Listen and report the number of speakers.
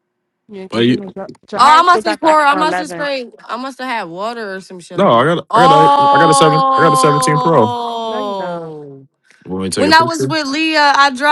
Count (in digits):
3